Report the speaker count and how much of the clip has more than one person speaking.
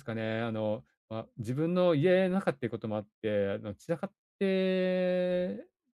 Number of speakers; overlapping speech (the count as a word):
one, no overlap